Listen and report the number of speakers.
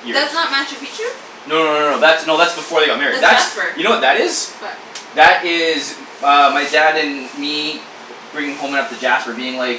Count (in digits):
2